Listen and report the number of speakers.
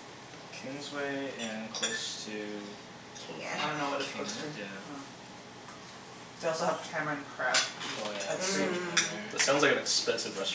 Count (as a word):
four